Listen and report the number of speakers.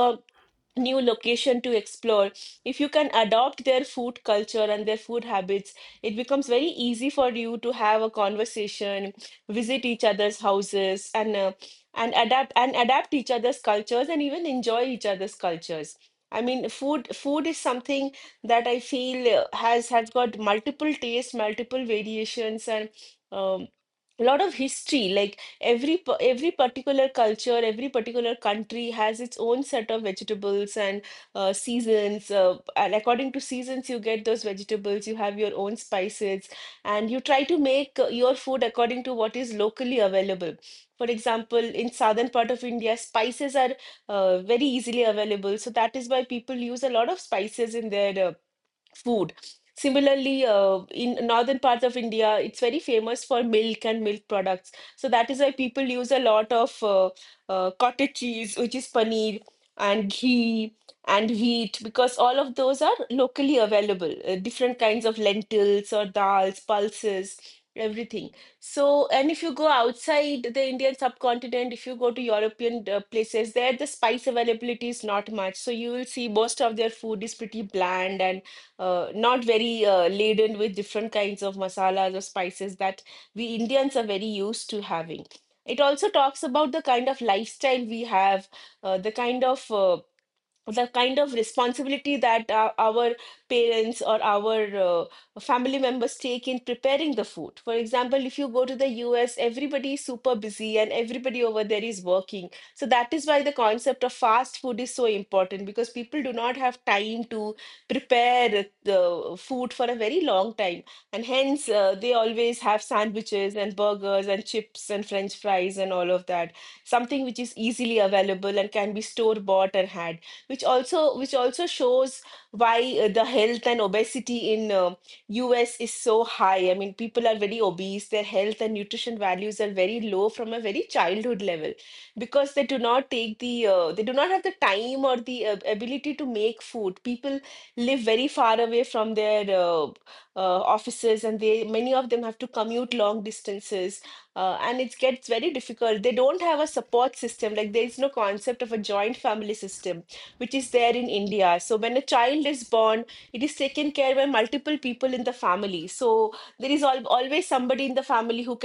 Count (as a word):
one